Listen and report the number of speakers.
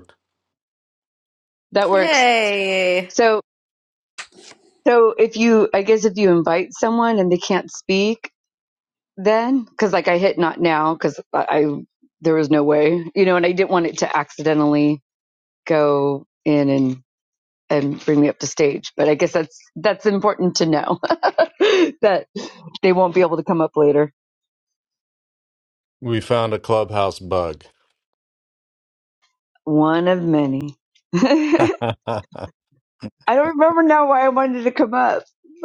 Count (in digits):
3